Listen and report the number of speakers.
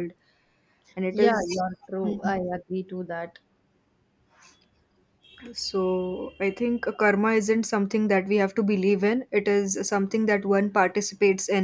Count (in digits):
2